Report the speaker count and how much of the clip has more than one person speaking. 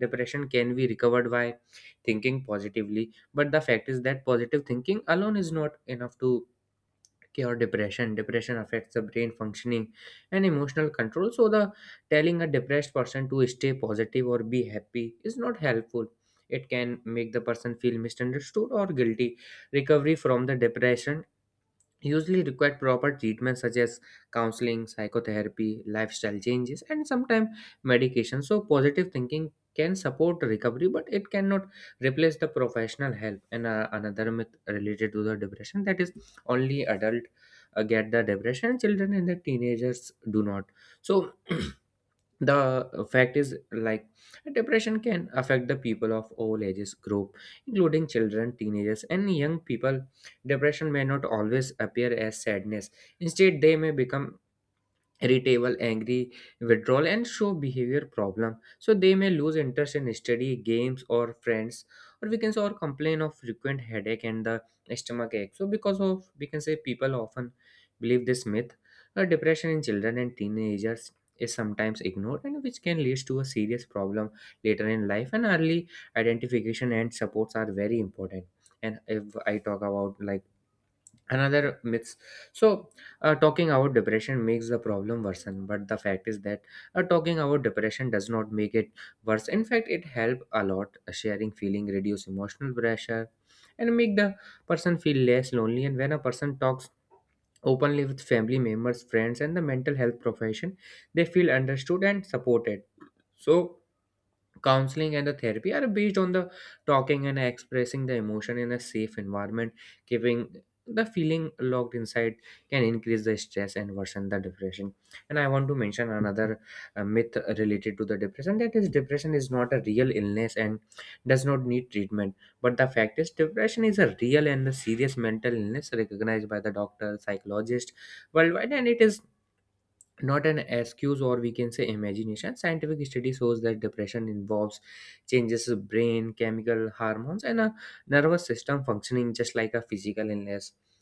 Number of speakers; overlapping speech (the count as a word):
one, no overlap